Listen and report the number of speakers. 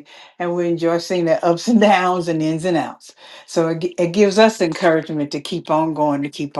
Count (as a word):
one